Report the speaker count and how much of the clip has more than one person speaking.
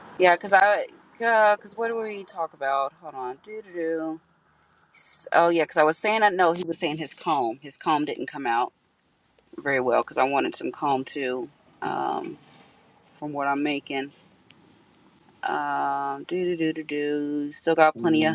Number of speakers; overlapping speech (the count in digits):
1, no overlap